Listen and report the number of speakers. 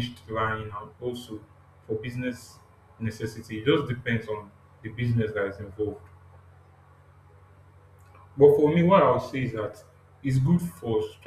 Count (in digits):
1